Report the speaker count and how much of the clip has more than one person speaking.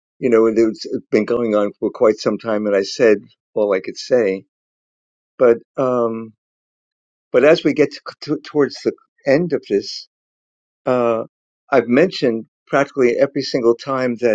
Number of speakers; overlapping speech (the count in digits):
1, no overlap